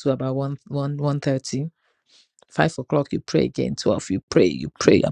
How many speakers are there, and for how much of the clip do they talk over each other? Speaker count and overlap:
one, no overlap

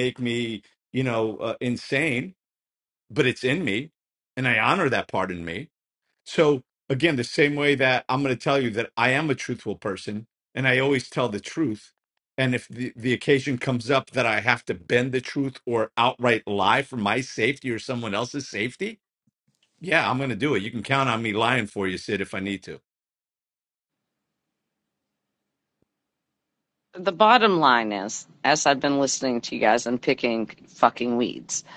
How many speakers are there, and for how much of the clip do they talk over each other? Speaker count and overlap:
two, no overlap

